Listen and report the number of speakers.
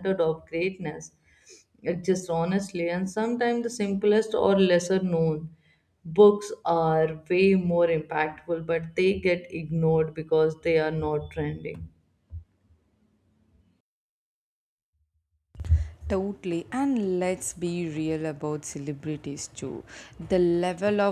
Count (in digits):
2